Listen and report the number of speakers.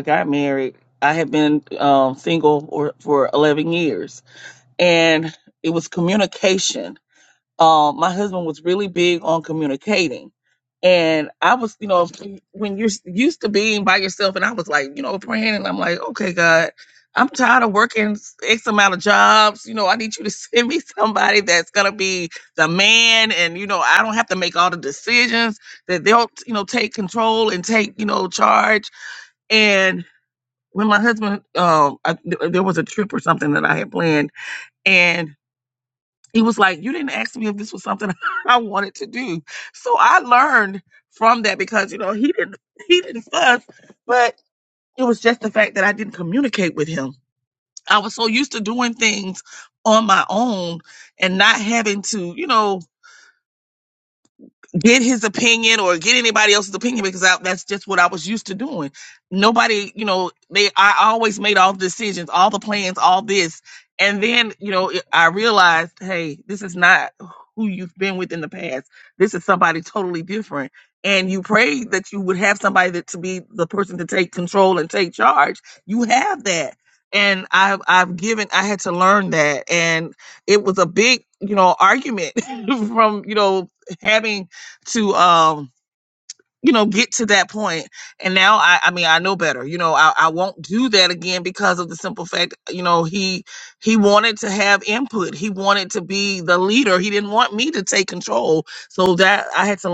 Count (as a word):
one